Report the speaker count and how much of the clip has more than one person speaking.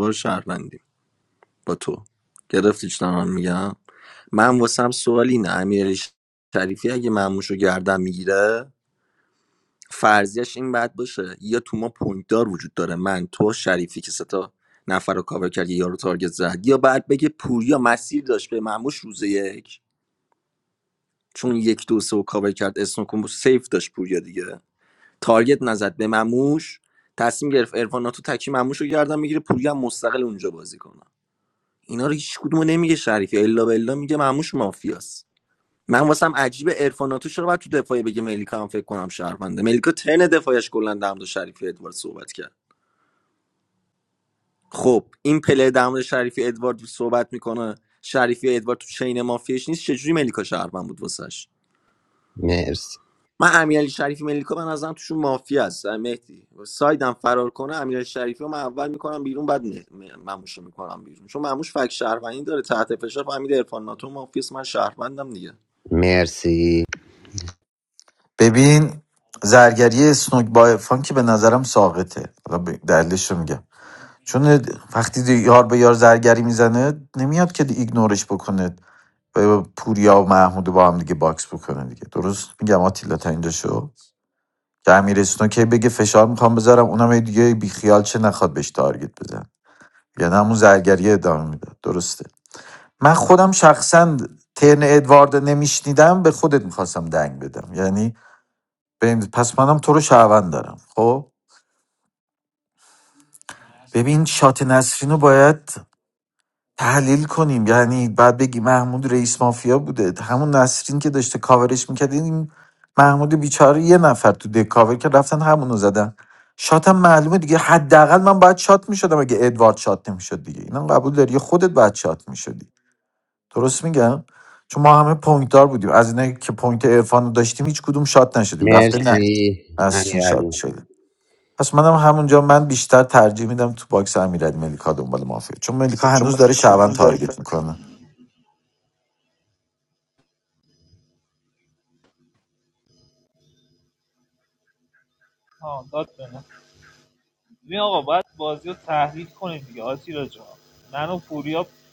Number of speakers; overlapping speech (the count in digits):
4, about 1%